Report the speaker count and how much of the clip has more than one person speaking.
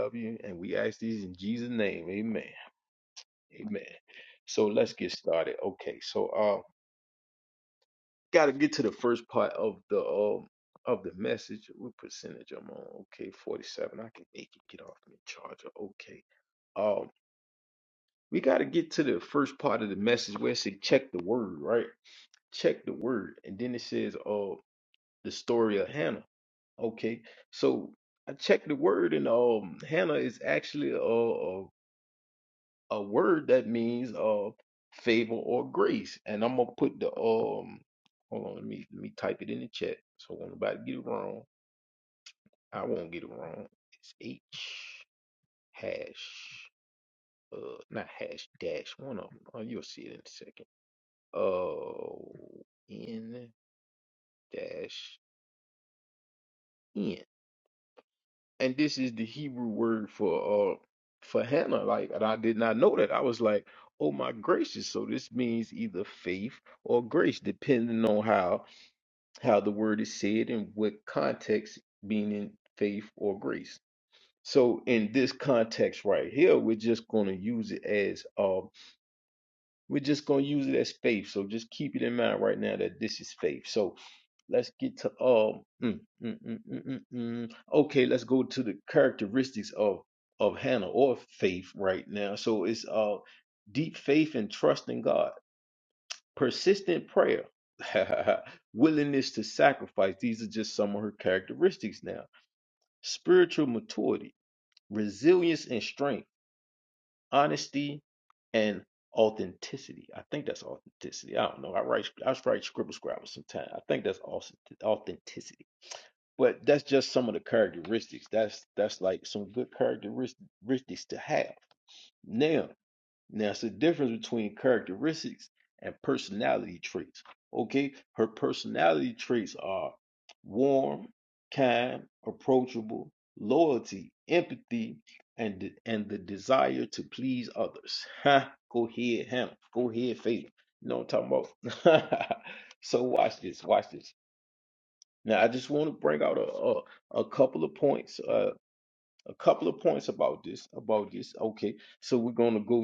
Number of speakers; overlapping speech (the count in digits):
1, no overlap